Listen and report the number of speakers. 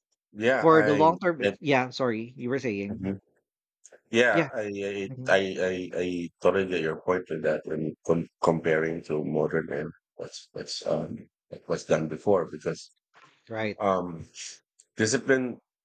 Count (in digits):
2